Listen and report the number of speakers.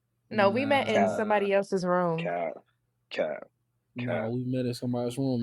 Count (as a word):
three